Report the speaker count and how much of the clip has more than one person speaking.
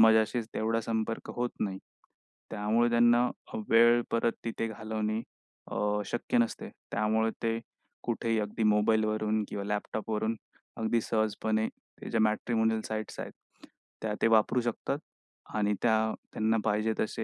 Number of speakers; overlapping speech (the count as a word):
one, no overlap